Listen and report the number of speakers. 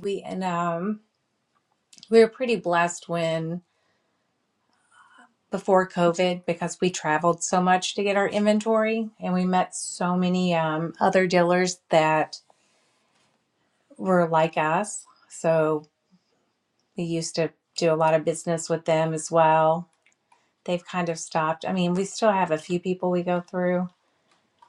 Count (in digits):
1